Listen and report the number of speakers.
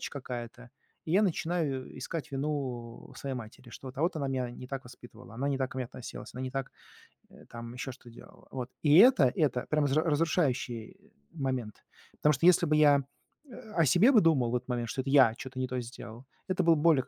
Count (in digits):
1